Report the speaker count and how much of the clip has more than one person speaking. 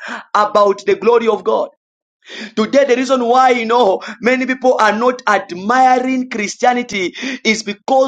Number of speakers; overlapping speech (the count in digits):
1, no overlap